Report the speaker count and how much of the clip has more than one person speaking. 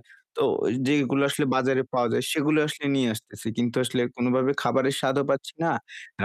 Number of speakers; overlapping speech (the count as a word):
one, no overlap